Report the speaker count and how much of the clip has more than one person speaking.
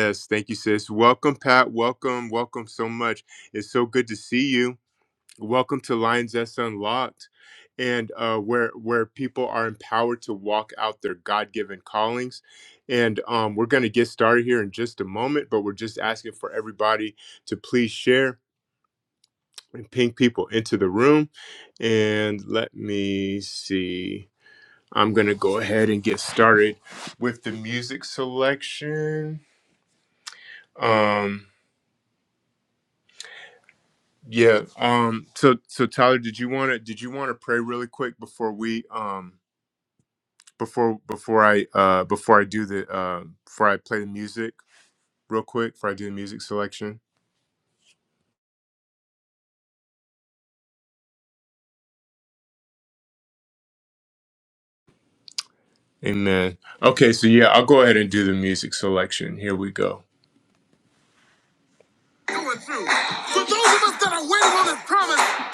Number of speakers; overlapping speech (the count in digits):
1, no overlap